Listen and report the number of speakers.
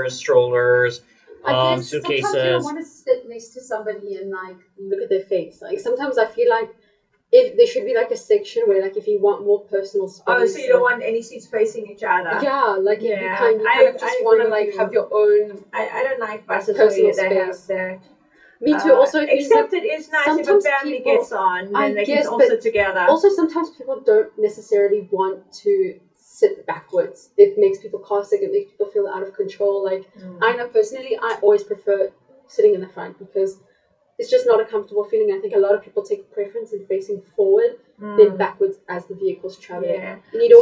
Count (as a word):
three